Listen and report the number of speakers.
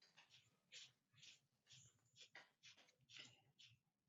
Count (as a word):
zero